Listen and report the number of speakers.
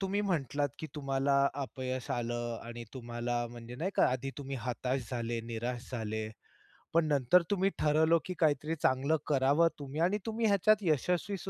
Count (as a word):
one